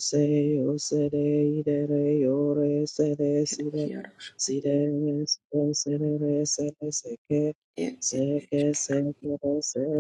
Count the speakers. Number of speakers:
2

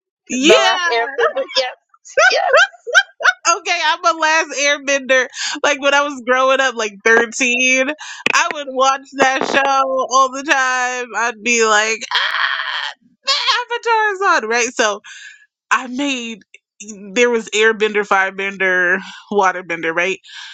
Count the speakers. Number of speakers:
2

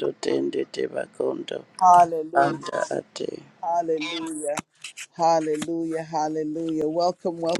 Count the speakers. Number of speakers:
2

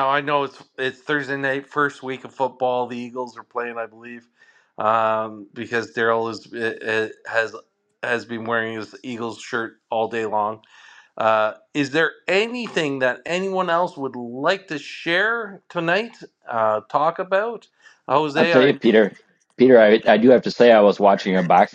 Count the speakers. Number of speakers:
2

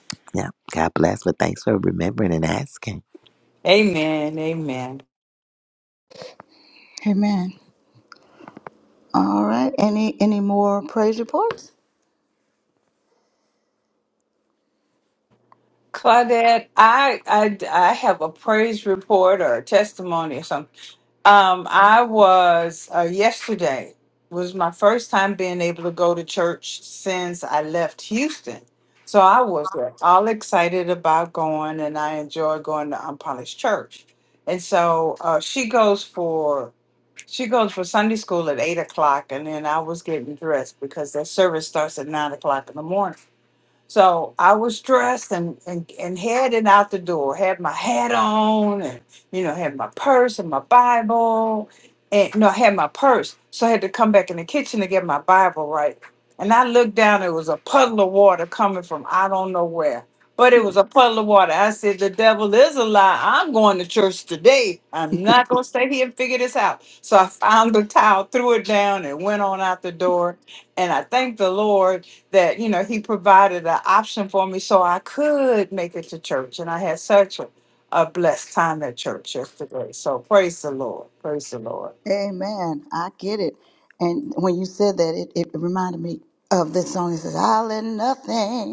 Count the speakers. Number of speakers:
3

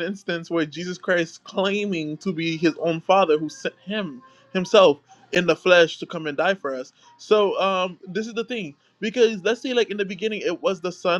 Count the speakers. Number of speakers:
1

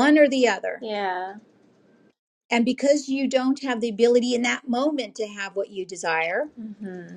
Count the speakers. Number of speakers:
2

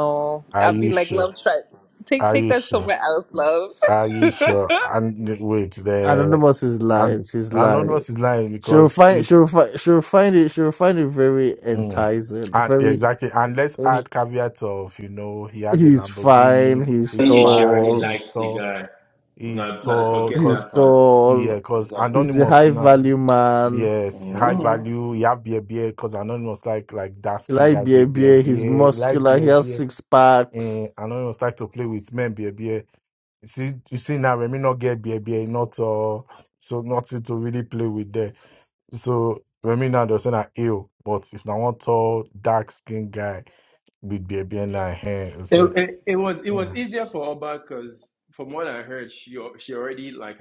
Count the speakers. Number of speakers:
4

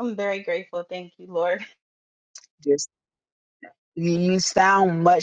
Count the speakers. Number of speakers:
2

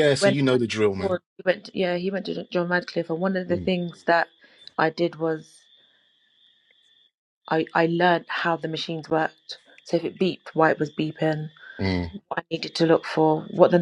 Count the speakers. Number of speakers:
2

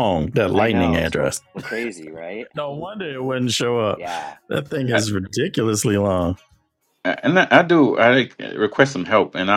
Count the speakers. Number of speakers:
3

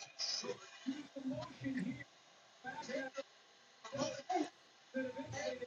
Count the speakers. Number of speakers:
0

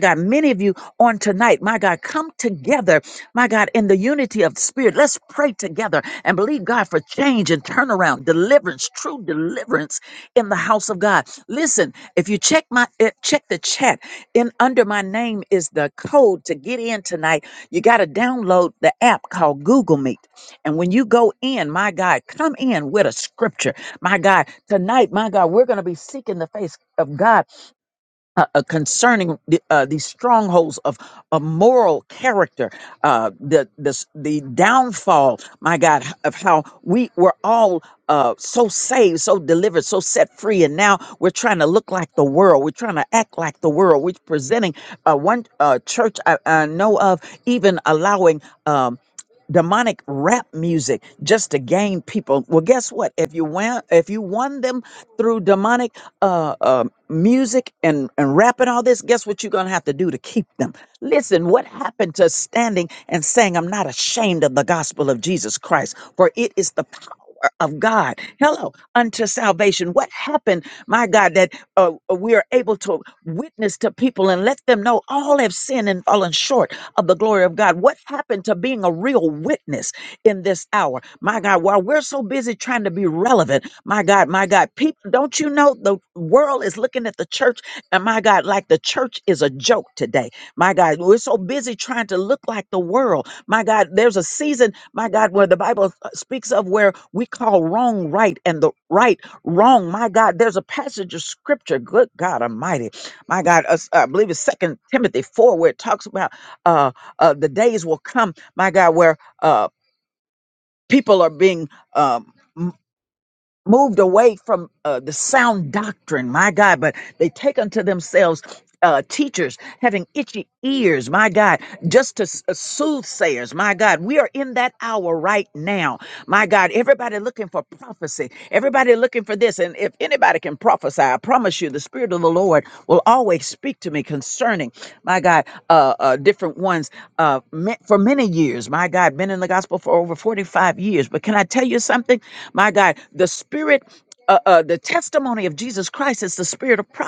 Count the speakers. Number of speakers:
1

